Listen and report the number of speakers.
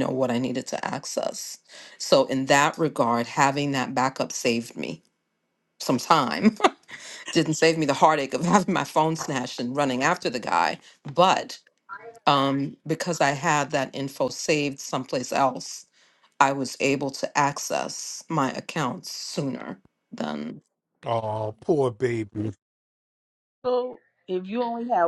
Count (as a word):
three